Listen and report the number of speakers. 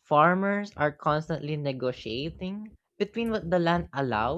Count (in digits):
1